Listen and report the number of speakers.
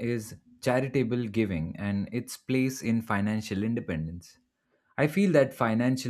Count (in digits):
1